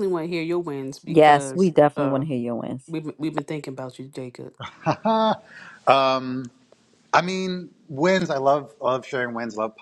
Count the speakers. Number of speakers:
3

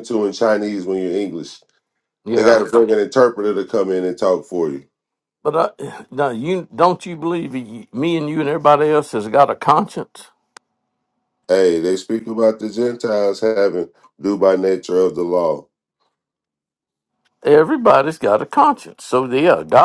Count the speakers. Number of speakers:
2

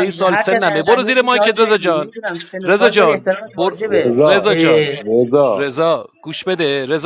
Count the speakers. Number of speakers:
3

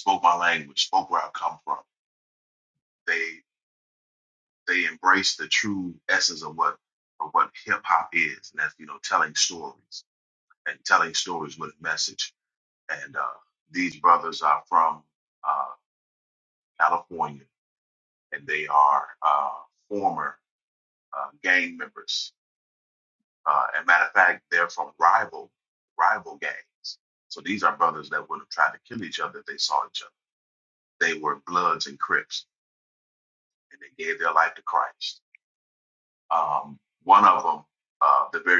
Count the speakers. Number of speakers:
1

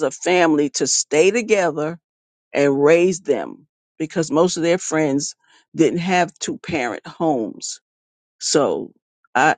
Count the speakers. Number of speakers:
1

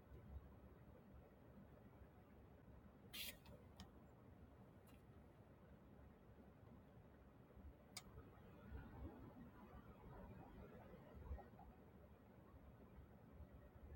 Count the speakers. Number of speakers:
0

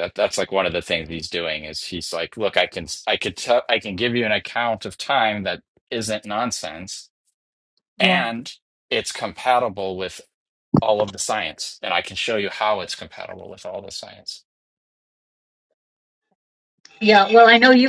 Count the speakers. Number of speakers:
2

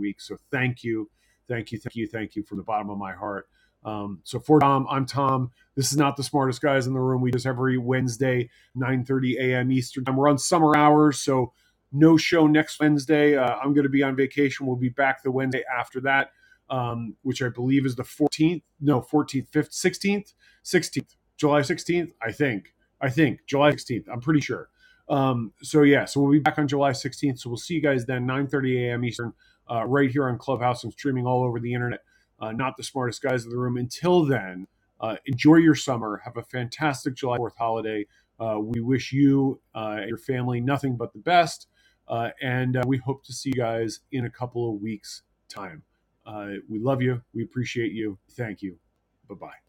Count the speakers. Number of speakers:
1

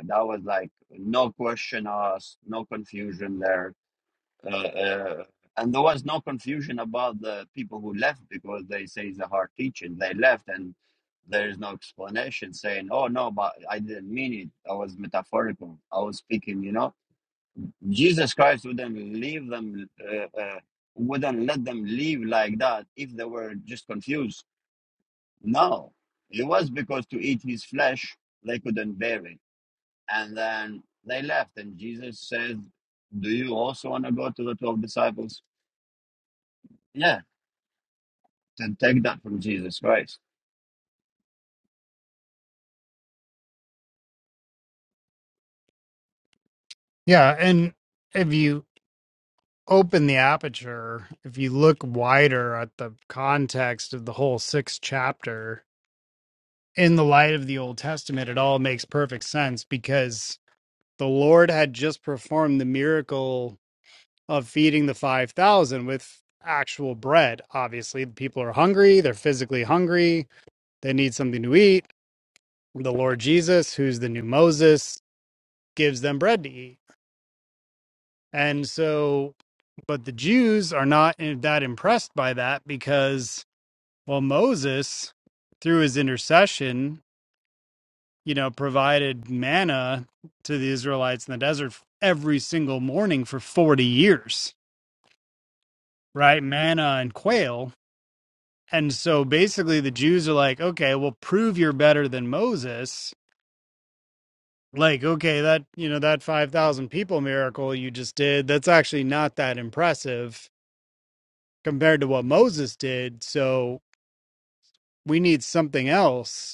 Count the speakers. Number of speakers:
2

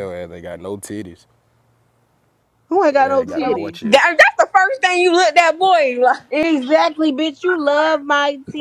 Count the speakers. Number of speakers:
3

